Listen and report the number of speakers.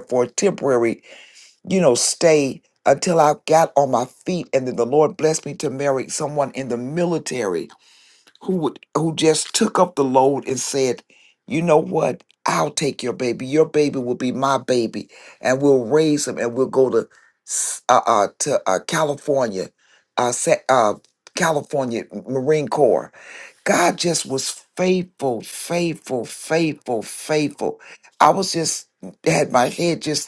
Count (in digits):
1